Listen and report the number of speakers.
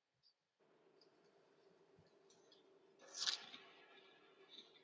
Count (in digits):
0